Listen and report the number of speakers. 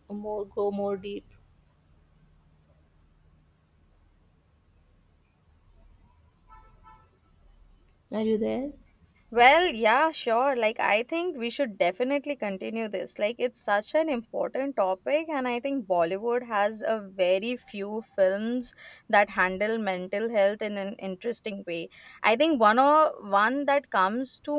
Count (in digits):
2